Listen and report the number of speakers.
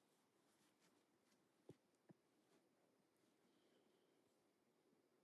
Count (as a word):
zero